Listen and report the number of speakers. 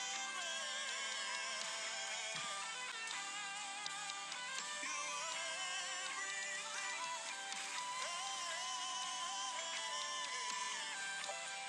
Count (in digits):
0